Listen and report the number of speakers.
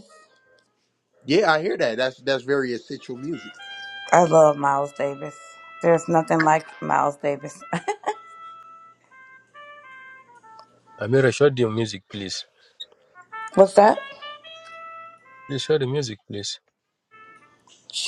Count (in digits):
3